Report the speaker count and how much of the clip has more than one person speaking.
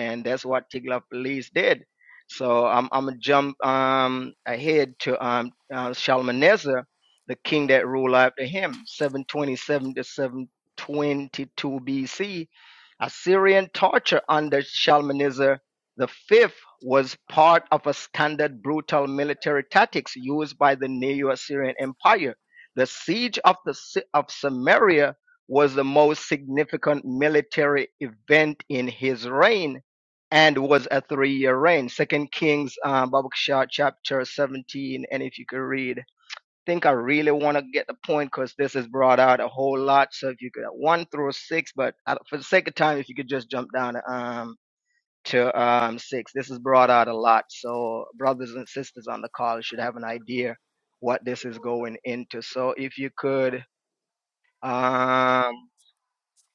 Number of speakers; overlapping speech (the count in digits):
1, no overlap